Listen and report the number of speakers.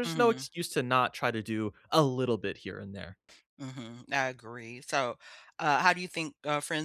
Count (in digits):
2